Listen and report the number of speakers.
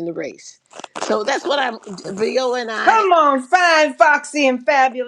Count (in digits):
2